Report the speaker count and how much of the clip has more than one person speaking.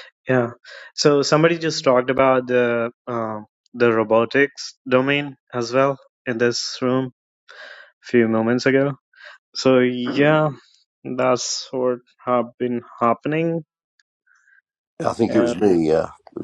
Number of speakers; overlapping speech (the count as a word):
two, about 2%